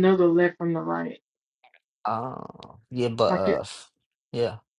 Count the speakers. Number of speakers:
2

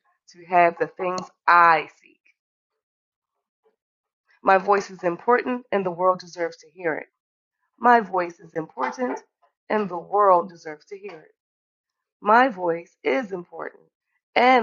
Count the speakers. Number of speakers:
1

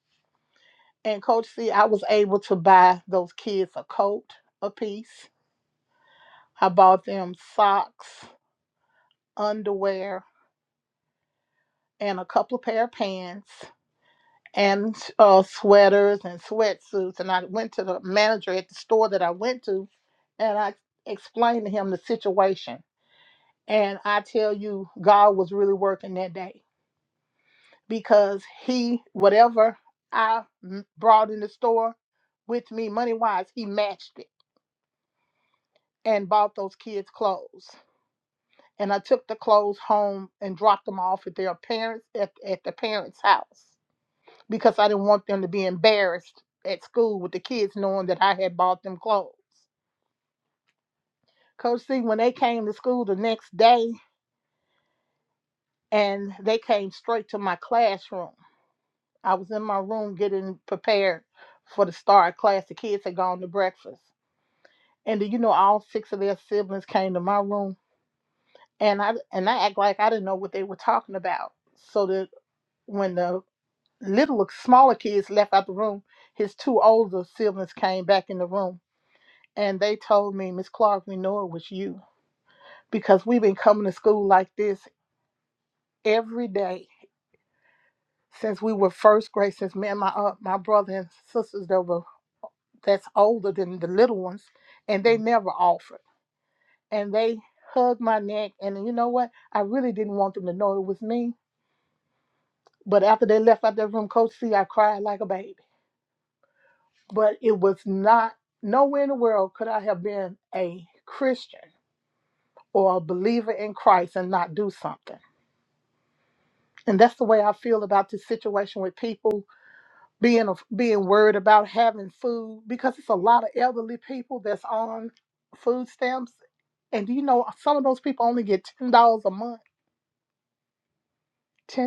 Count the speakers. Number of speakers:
1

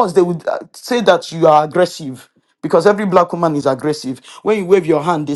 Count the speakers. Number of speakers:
1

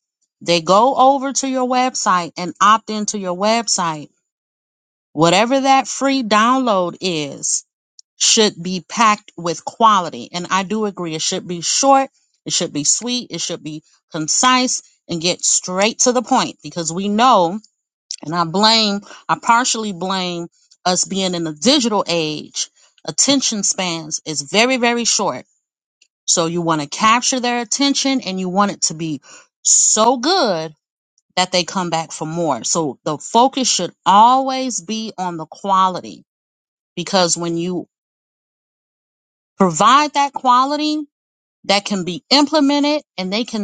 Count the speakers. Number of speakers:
1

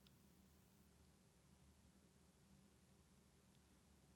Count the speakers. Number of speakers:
0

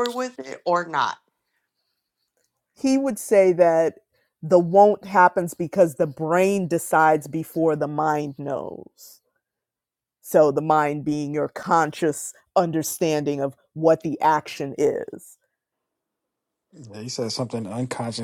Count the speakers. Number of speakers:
3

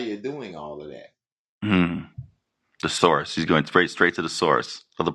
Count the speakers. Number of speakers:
2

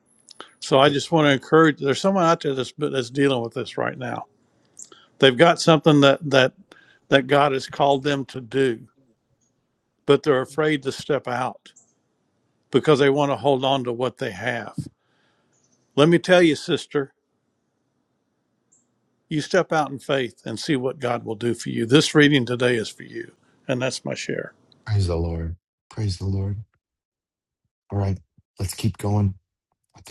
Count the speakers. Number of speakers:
2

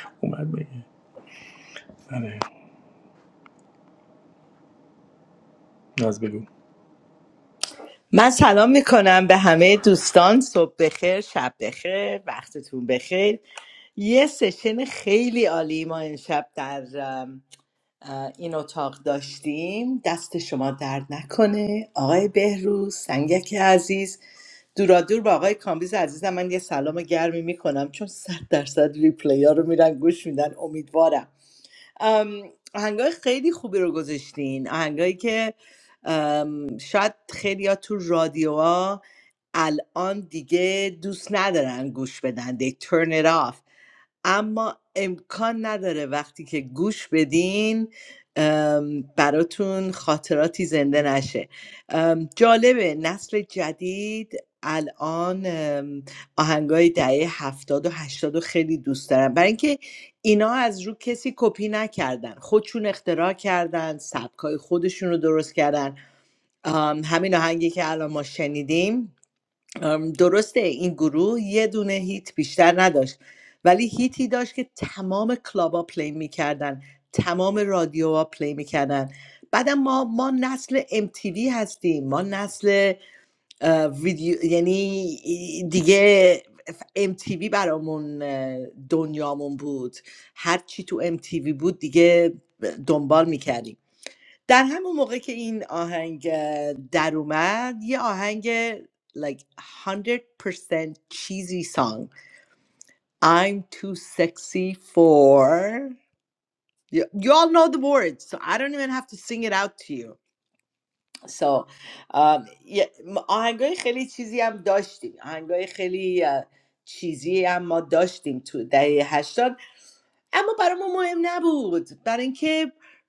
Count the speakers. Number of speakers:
2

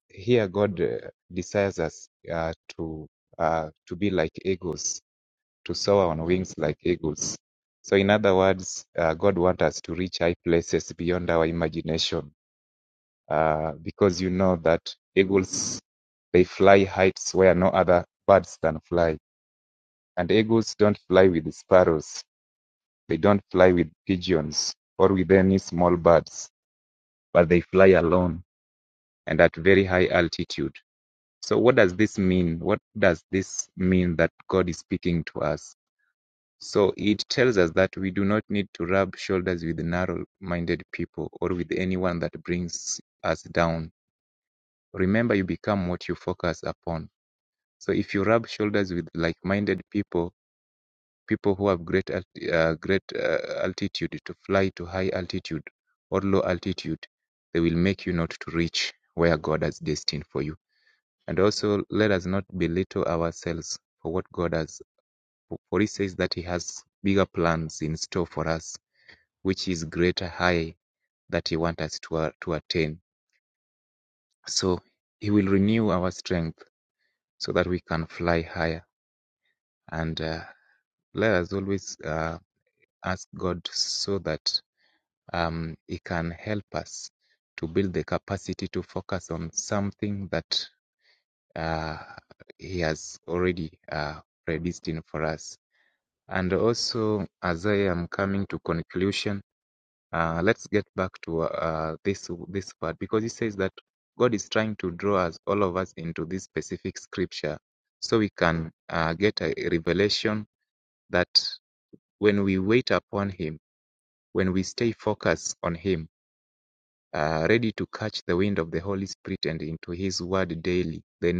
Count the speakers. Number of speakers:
1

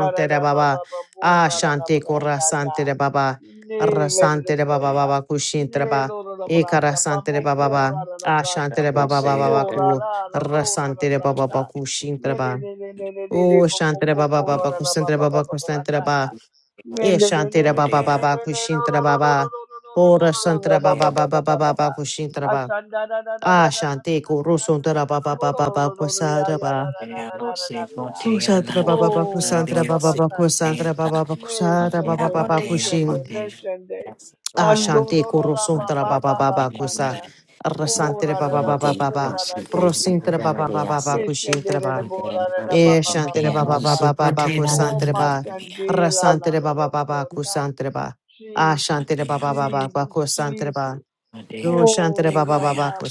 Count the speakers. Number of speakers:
3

